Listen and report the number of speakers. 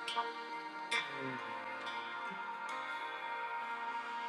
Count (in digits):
0